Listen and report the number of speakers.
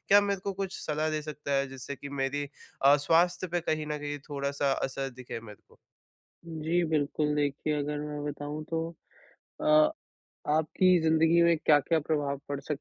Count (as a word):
two